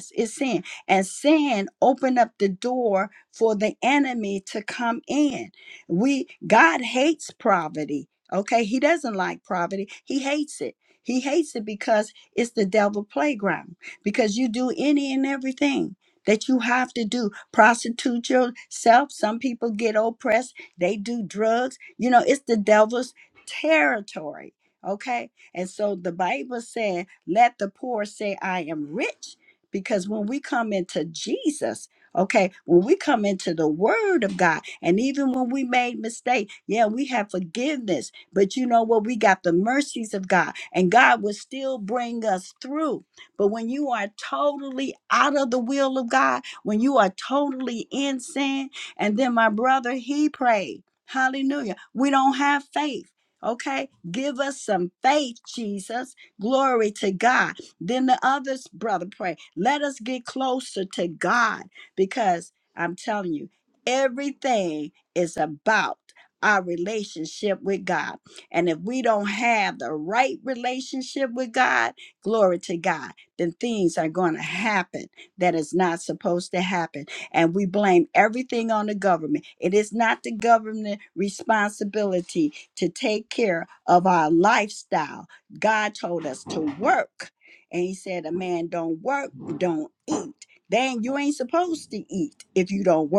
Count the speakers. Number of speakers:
1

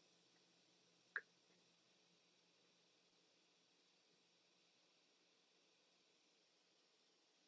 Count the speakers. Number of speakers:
0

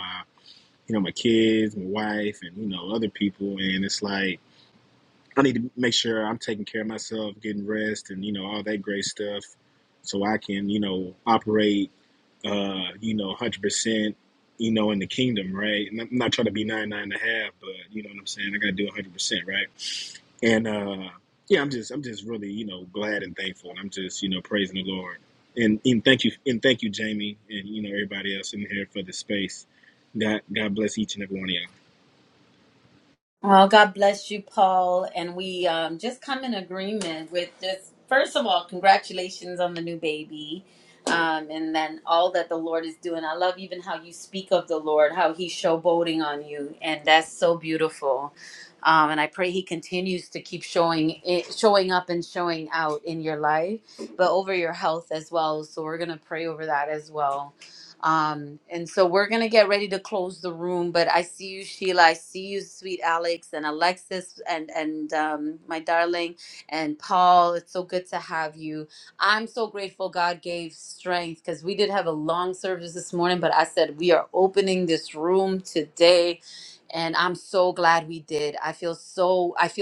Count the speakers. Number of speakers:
2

